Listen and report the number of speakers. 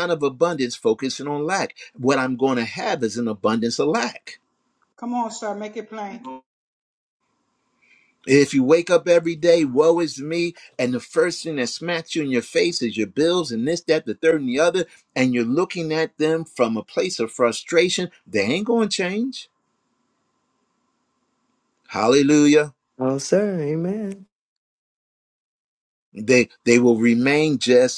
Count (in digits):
3